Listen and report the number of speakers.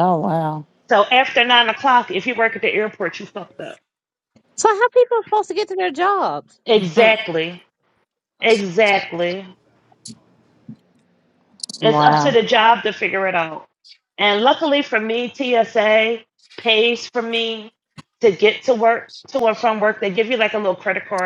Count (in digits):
3